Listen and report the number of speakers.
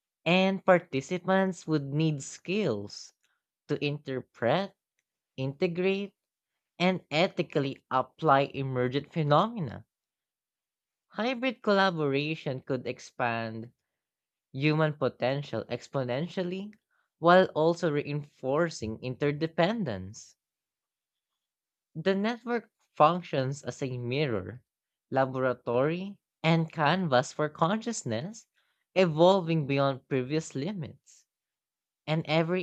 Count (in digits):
1